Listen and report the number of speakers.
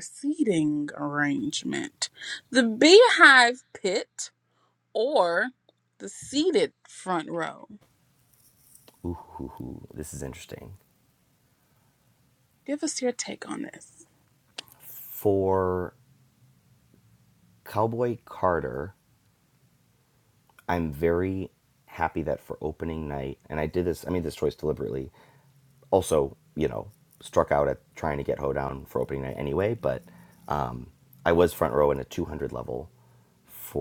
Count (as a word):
two